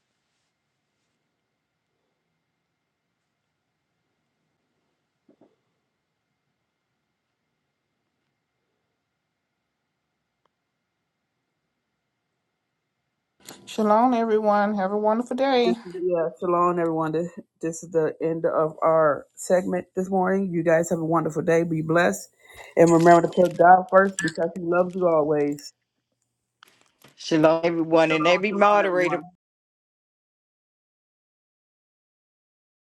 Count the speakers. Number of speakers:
three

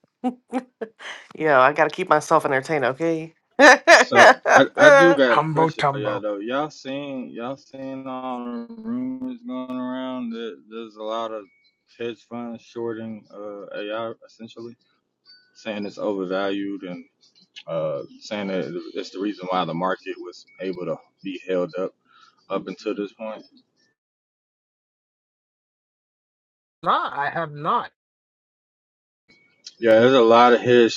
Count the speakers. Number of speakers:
three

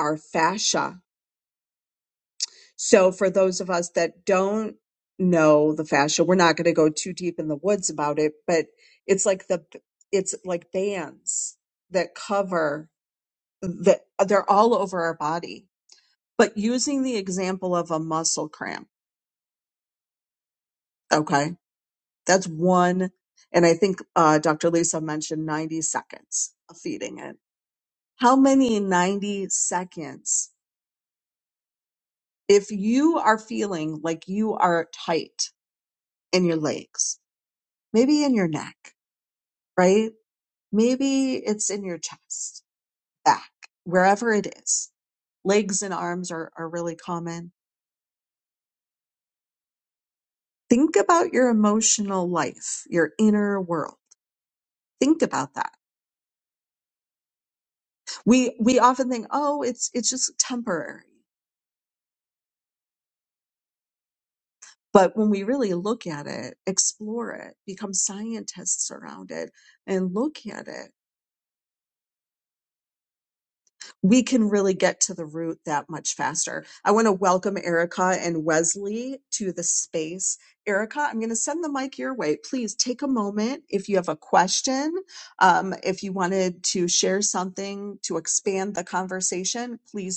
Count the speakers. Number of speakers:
one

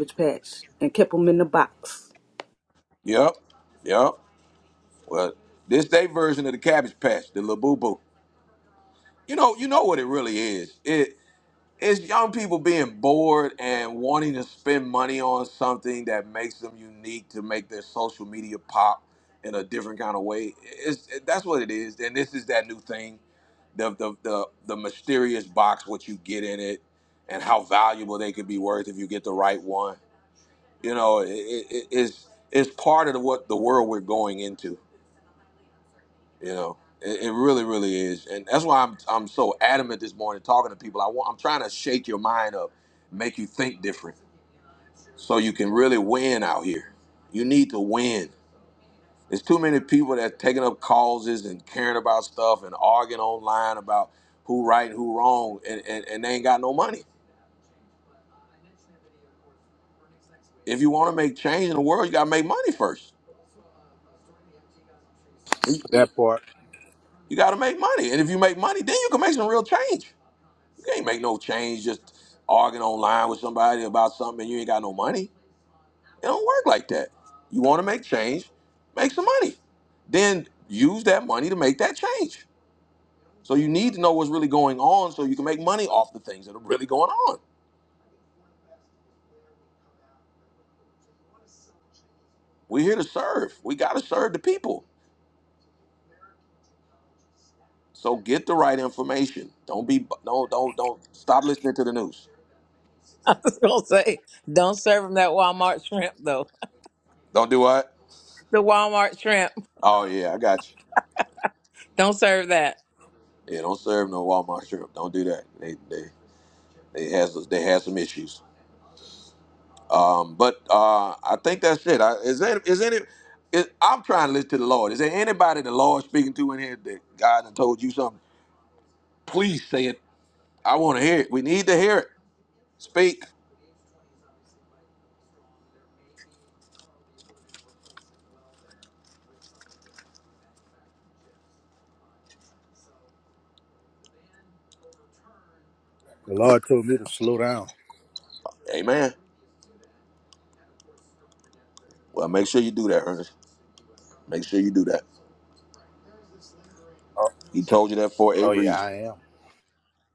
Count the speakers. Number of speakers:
four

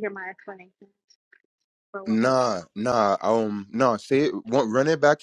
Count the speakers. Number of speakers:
two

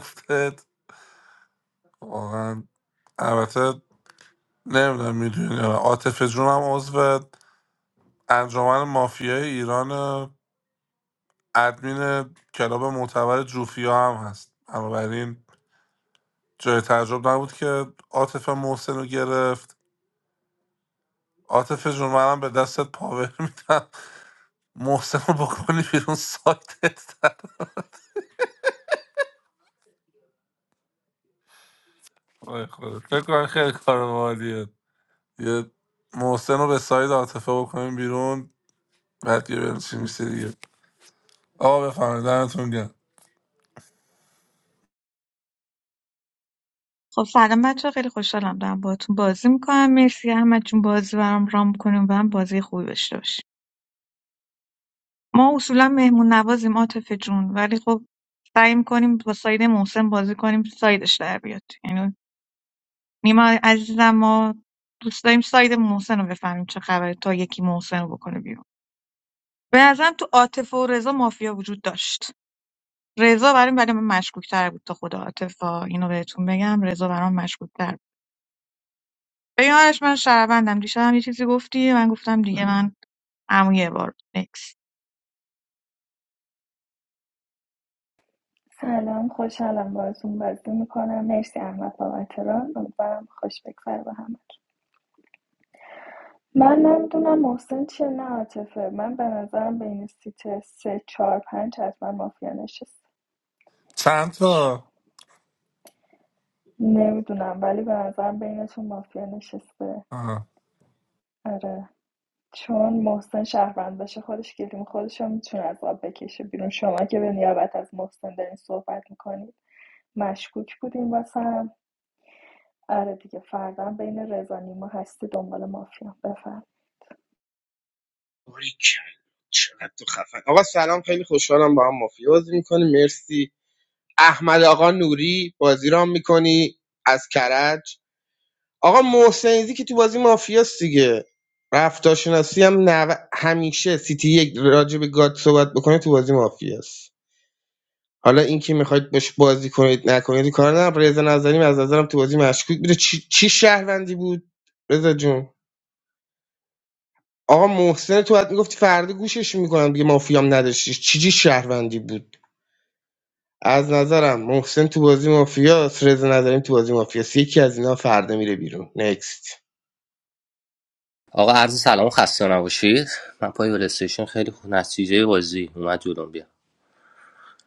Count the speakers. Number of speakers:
five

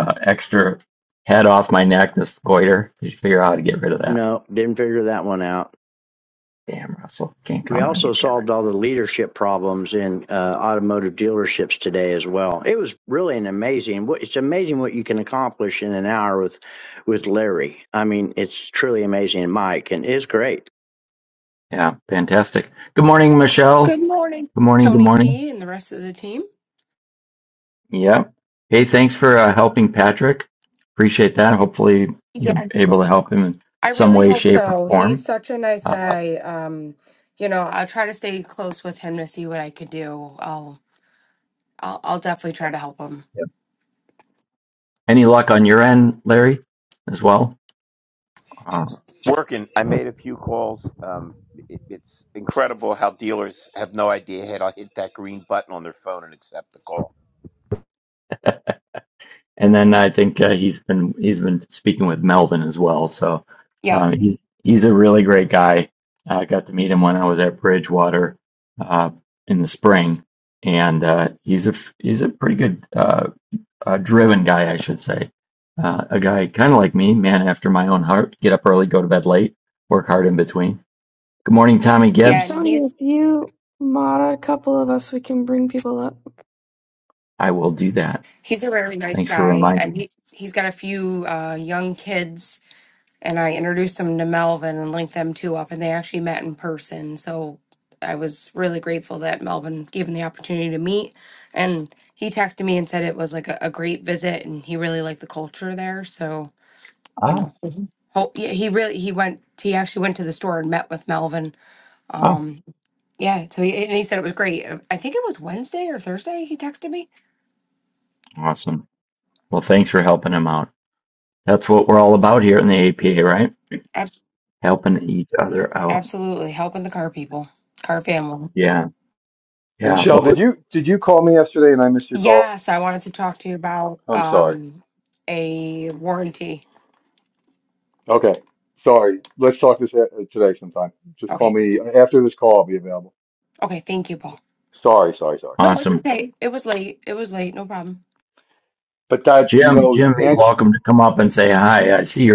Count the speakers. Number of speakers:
six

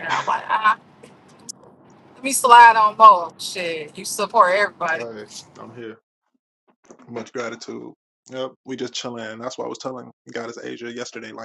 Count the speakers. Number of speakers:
two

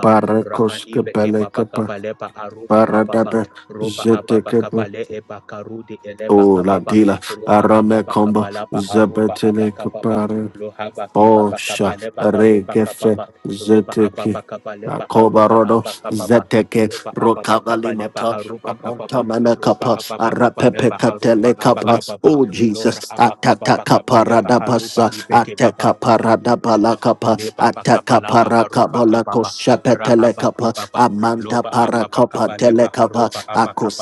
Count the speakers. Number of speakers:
two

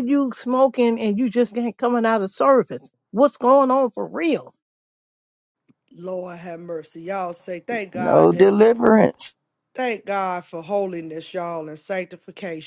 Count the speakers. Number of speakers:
three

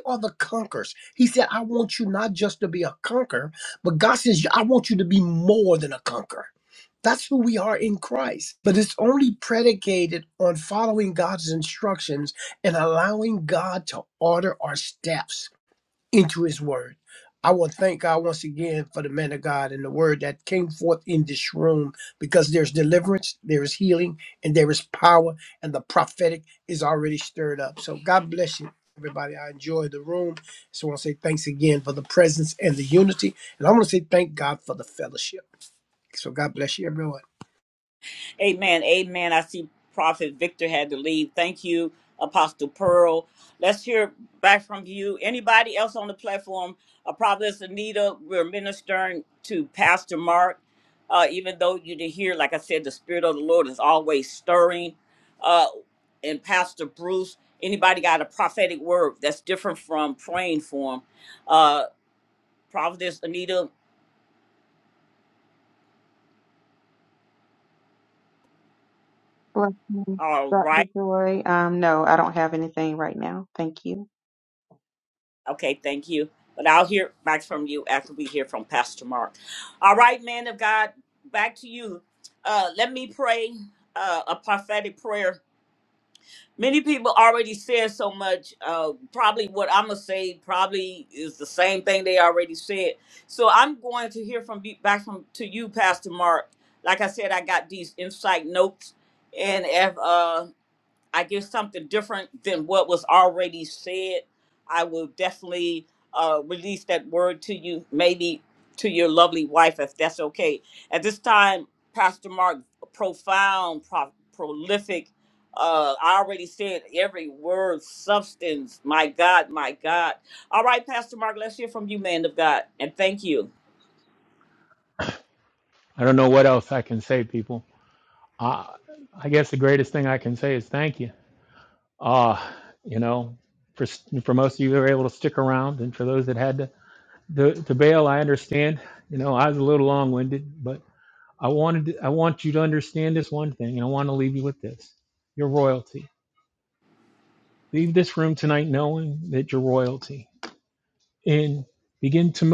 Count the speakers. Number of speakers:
four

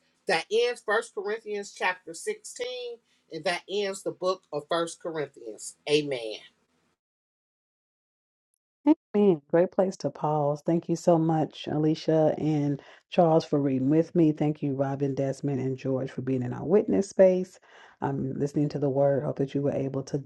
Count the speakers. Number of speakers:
two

